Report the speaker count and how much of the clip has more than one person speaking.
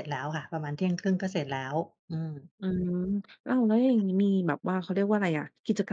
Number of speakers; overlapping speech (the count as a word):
two, no overlap